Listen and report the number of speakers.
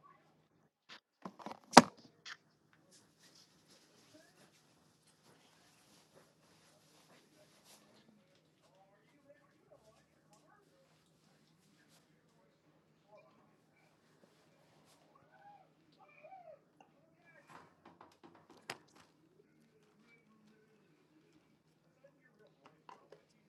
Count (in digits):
0